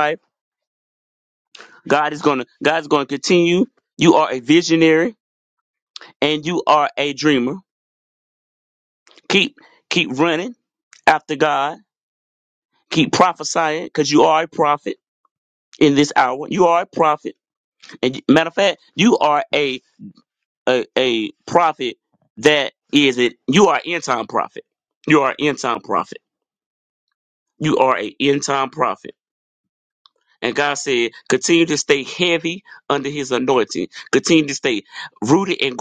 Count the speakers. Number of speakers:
1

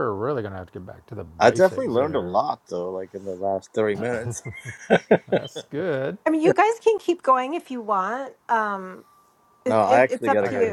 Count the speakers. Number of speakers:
3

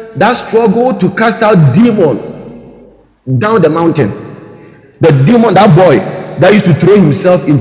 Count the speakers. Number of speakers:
1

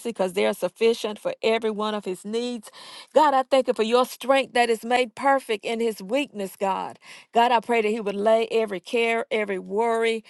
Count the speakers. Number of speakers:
1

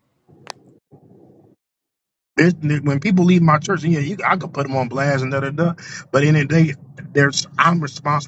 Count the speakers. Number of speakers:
1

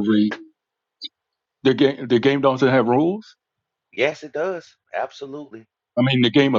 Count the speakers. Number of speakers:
2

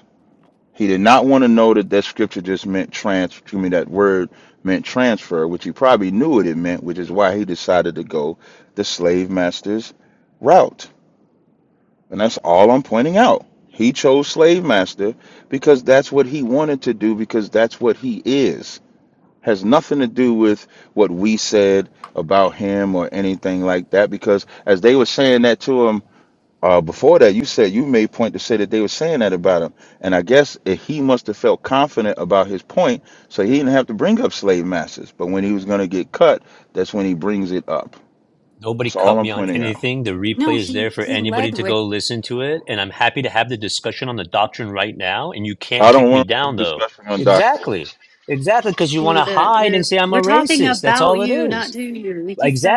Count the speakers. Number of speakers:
3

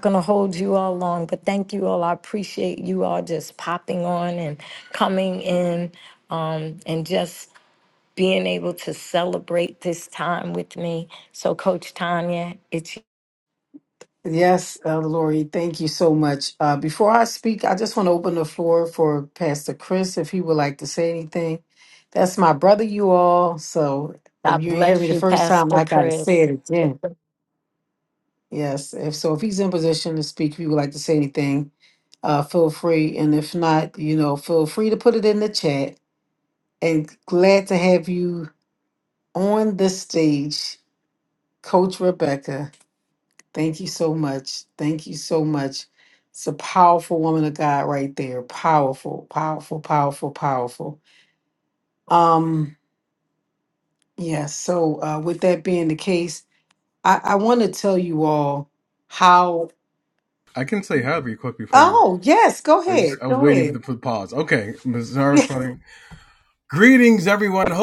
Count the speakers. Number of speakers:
3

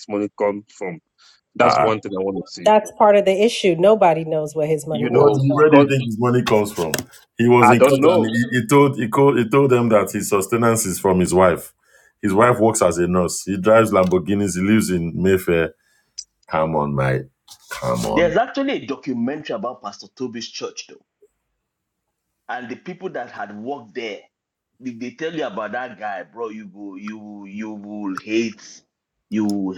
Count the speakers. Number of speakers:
4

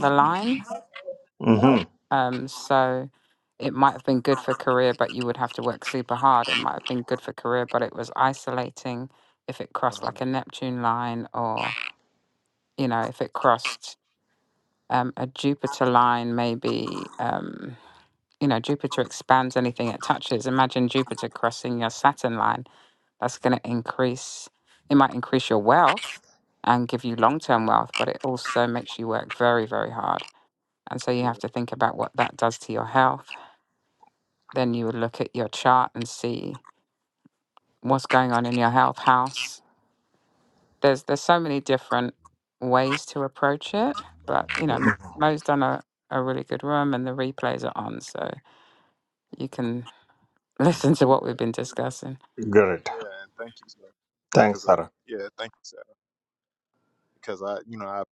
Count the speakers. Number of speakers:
3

